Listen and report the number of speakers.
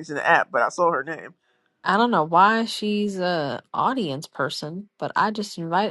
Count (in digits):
2